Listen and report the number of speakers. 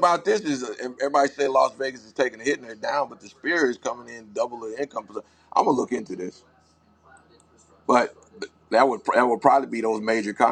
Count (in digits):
1